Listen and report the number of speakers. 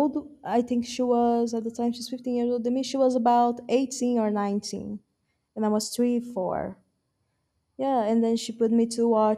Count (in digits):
1